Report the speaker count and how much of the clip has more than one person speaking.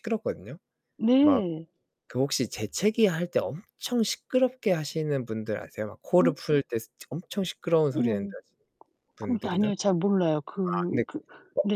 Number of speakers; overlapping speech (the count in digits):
2, about 14%